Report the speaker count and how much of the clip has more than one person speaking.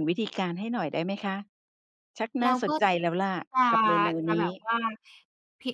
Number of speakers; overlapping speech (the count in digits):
2, about 12%